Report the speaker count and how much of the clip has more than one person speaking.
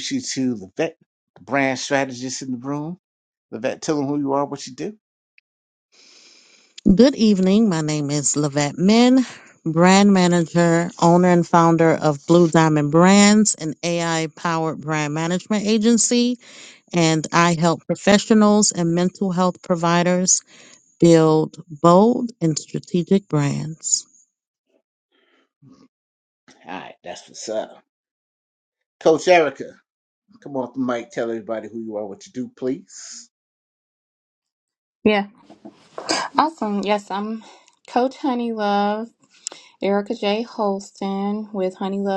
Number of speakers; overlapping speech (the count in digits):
3, no overlap